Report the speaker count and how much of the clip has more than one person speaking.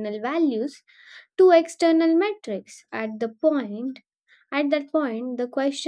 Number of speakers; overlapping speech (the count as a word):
one, no overlap